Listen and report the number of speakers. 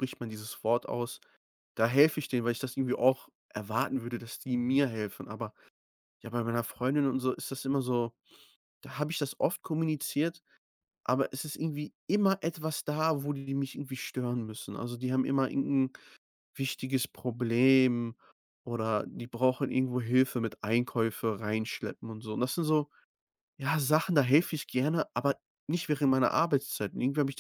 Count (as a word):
one